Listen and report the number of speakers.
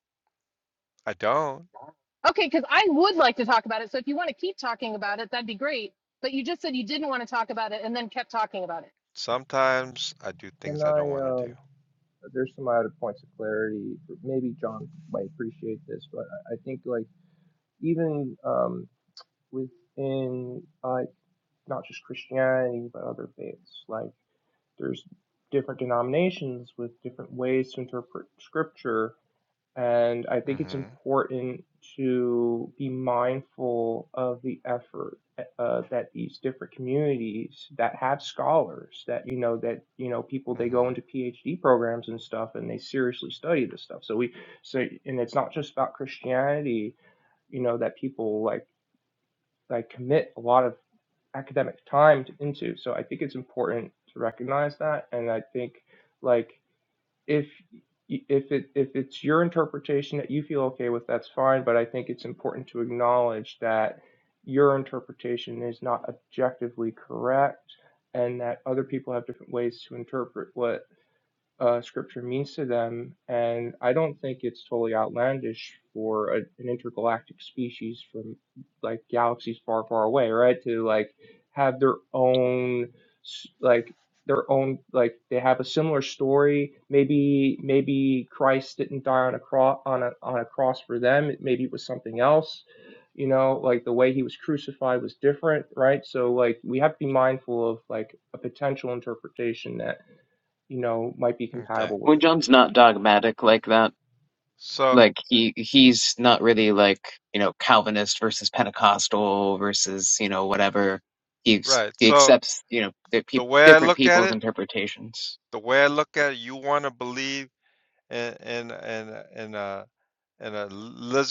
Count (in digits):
4